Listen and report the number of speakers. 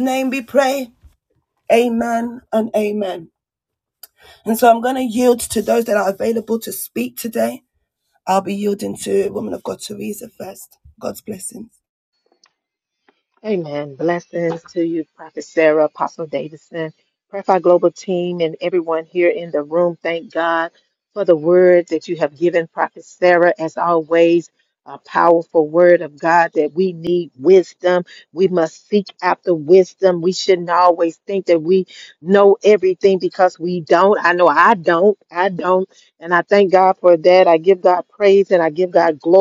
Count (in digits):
2